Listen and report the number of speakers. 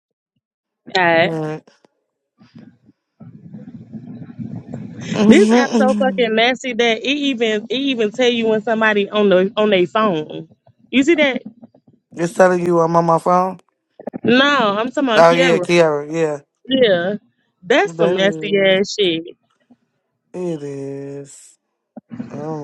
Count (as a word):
two